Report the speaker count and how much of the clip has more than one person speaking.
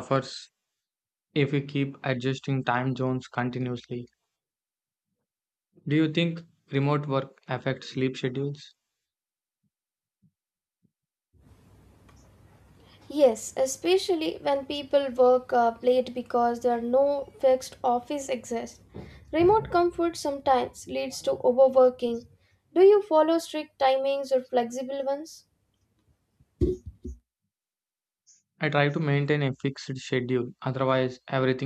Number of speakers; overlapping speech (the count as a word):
two, no overlap